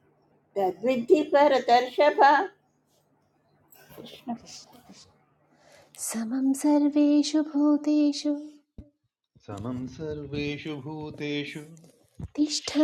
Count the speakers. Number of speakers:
three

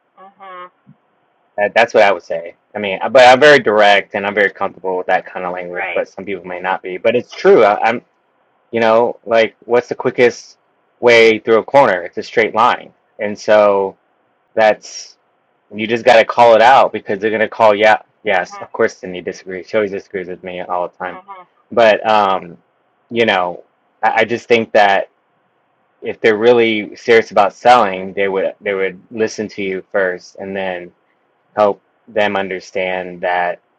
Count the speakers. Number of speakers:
two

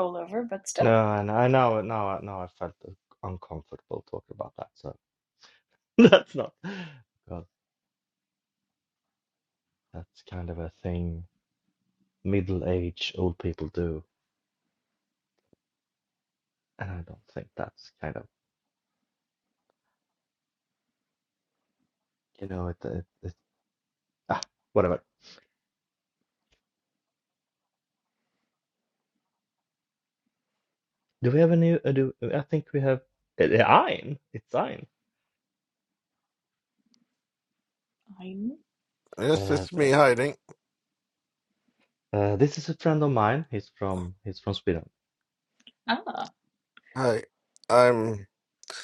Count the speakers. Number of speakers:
three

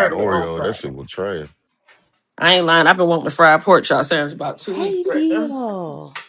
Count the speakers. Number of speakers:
three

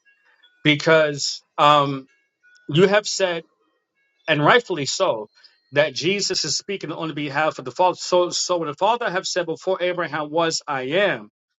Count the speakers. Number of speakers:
one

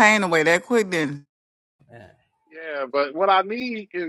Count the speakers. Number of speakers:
two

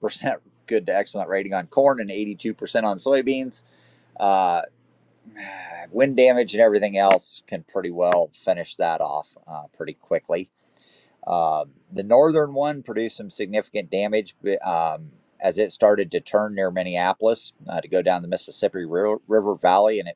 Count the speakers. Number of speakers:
one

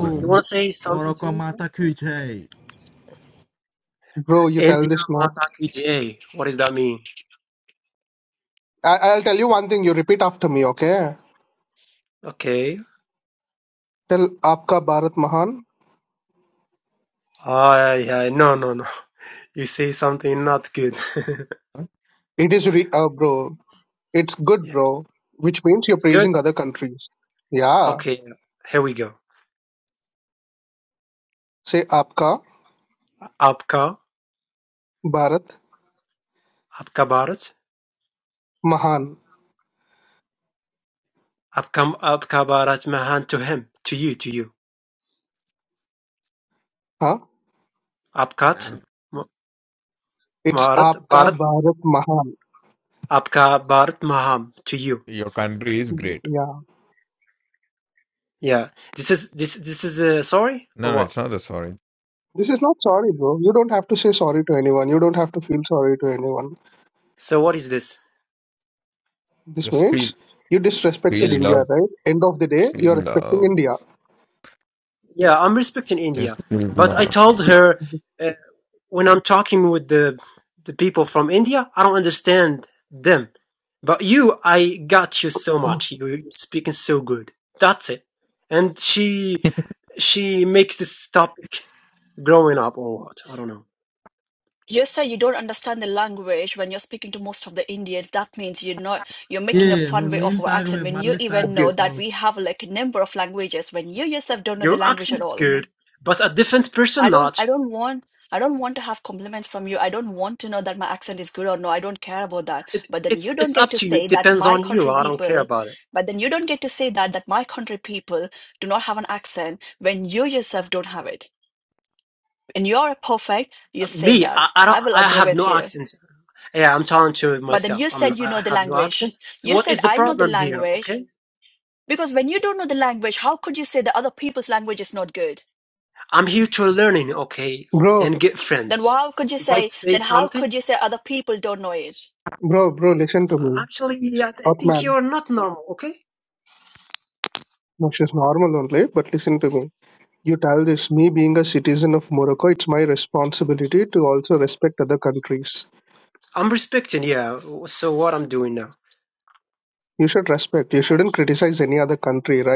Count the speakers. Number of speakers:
five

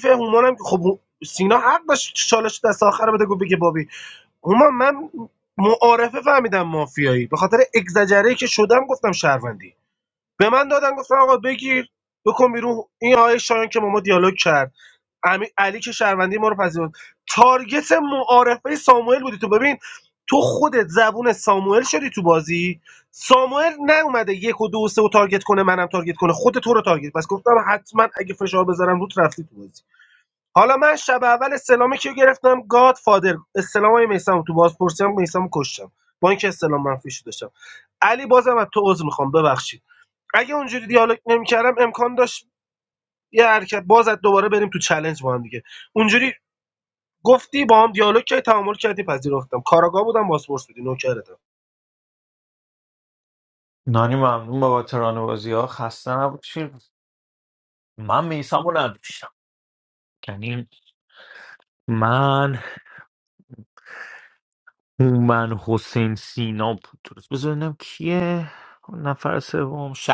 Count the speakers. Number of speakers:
two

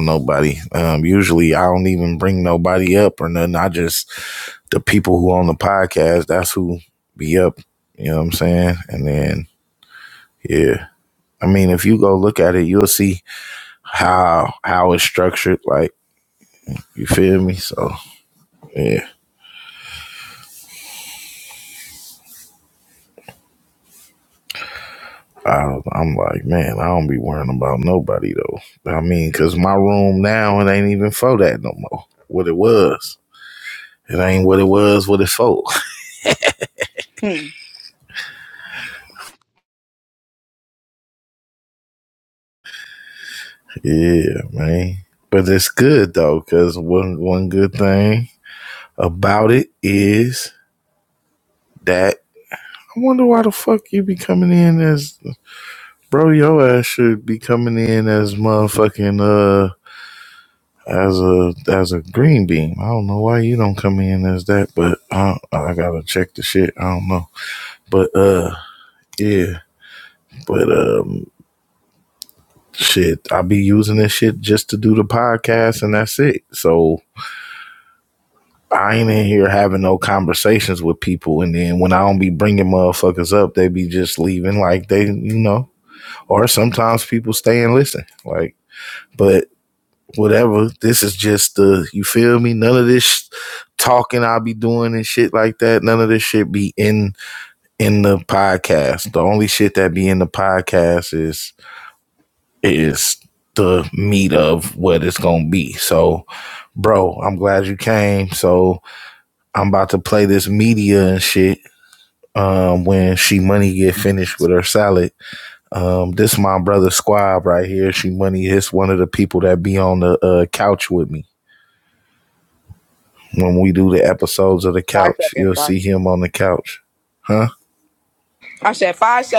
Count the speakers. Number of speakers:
two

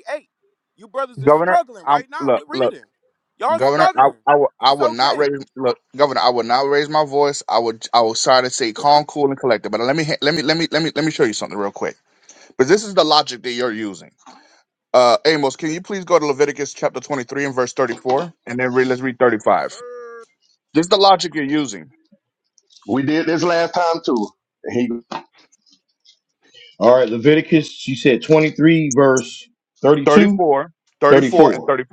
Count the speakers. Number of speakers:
four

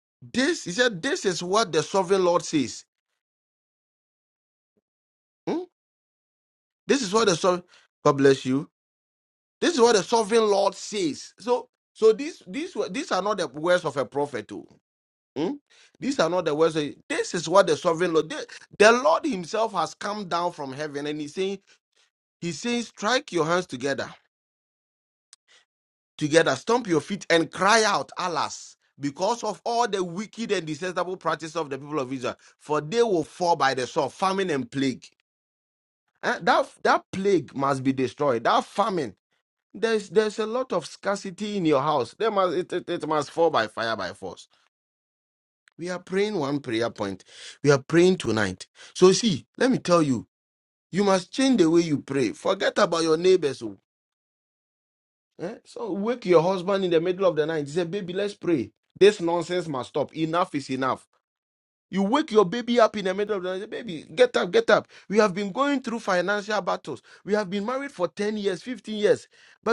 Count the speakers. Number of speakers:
one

